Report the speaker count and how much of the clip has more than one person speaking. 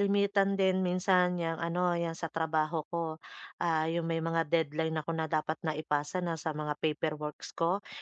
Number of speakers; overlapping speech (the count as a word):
one, no overlap